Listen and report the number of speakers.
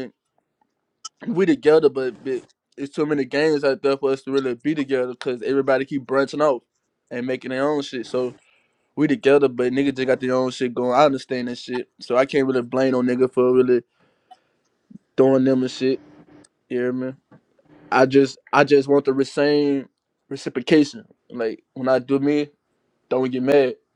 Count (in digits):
1